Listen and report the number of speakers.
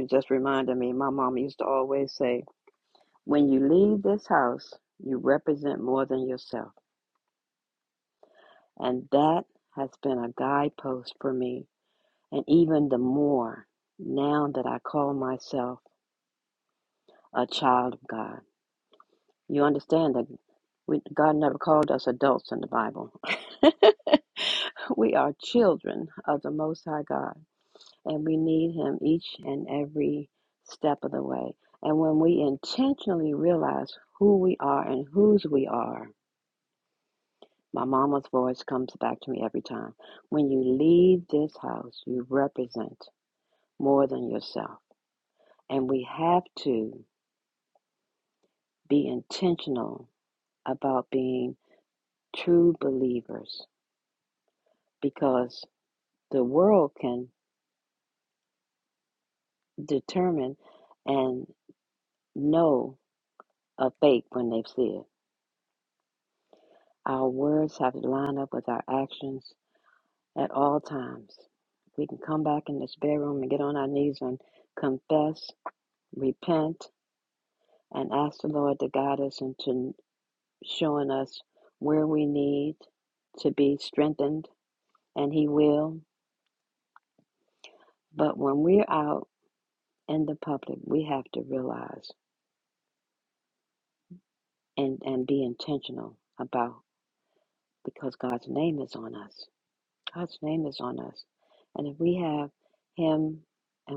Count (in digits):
1